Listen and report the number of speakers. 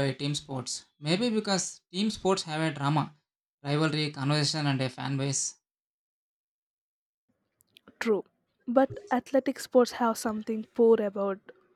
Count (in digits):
2